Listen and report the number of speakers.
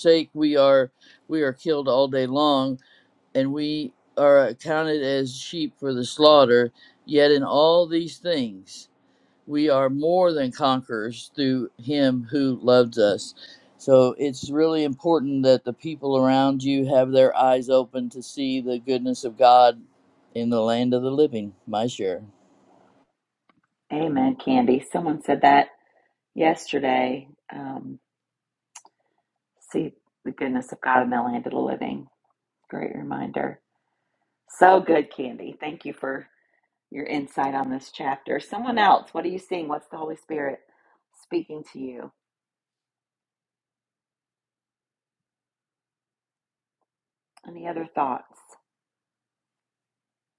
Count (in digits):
2